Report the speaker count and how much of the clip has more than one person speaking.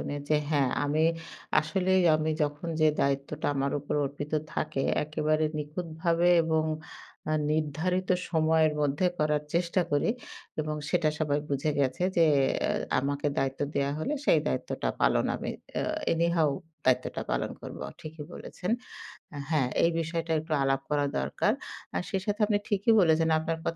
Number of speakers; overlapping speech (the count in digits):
1, no overlap